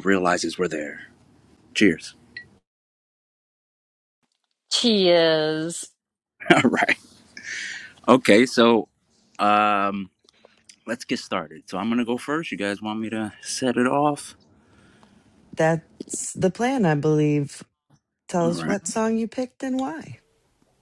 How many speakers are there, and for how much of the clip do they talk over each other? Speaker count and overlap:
3, about 2%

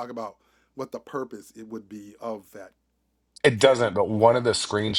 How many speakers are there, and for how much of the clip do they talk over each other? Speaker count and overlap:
2, about 11%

